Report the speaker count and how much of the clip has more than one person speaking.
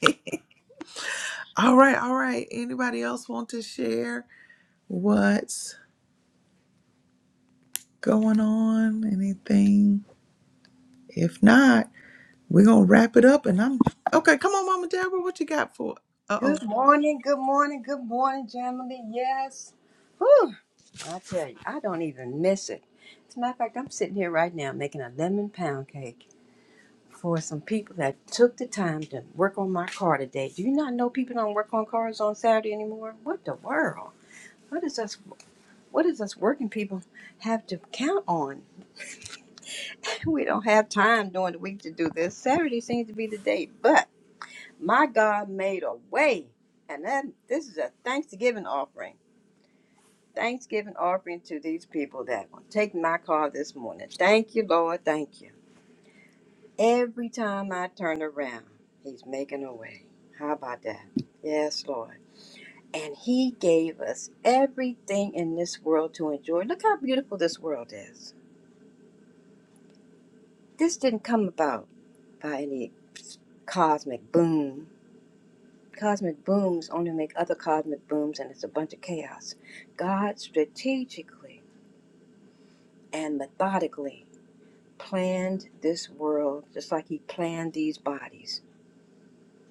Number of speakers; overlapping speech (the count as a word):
two, under 1%